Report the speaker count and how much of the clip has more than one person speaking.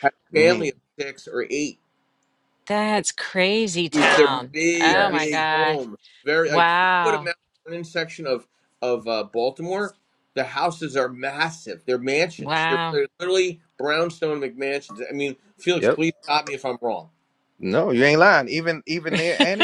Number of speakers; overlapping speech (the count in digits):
3, about 19%